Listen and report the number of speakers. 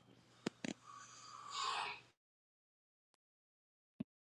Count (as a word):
zero